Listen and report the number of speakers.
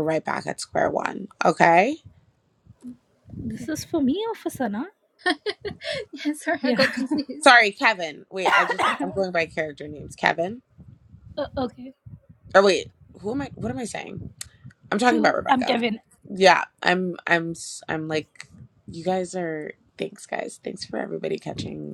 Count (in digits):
3